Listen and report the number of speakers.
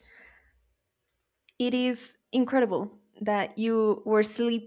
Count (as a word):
one